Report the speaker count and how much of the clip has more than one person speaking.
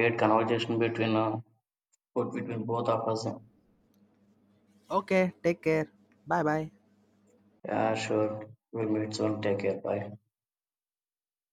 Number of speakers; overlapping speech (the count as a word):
two, no overlap